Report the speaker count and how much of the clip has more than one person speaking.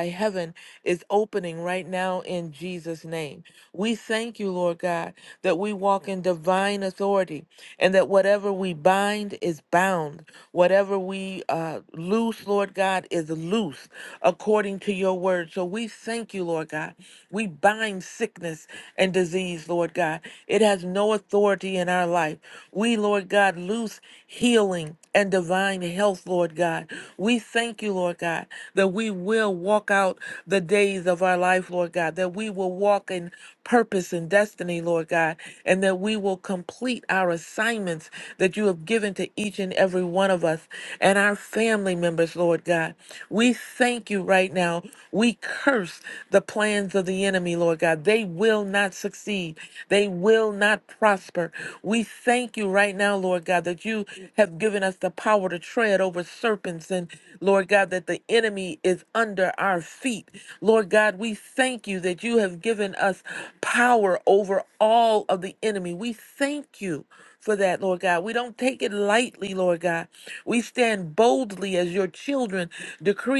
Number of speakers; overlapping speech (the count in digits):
1, no overlap